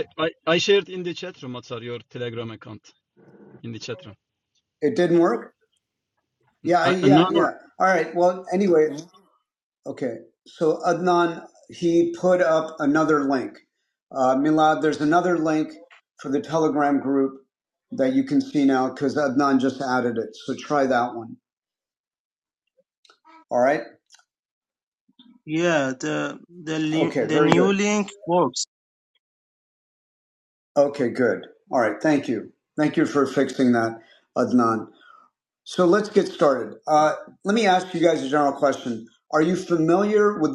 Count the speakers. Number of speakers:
three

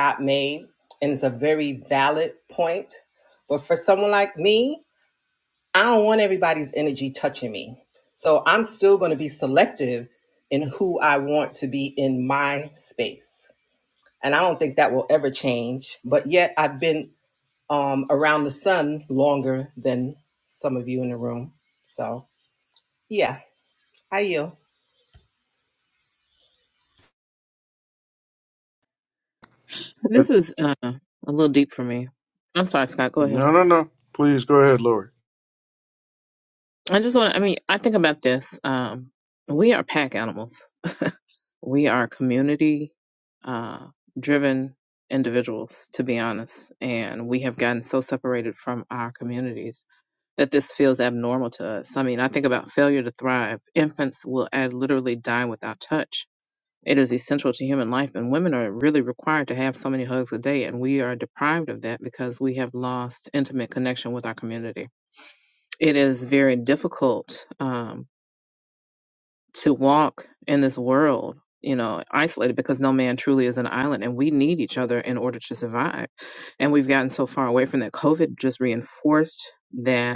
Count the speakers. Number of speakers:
three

